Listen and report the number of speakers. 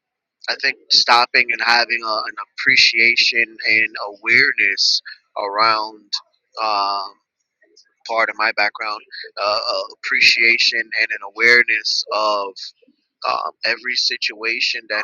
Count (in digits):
1